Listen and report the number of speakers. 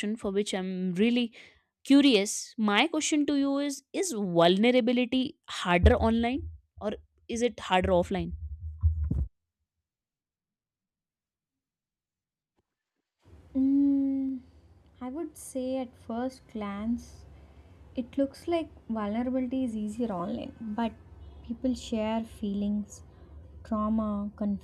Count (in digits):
2